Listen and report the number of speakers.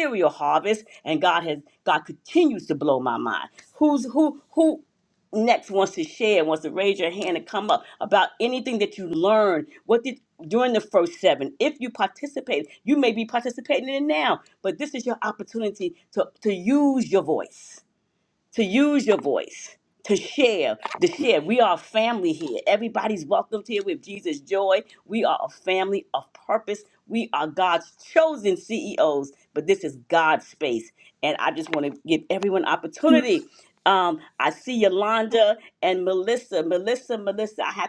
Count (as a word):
one